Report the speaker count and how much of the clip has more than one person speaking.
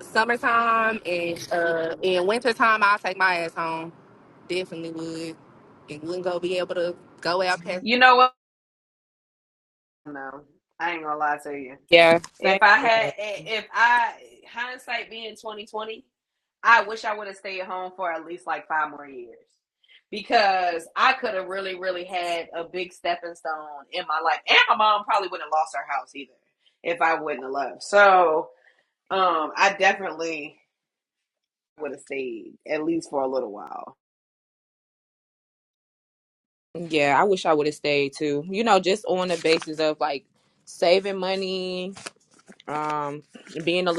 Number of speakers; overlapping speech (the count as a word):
three, about 2%